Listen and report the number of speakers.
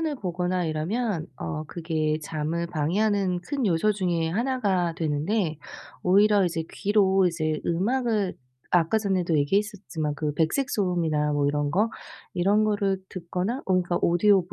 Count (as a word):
one